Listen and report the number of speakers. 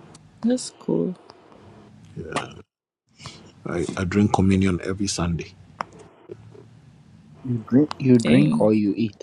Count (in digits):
3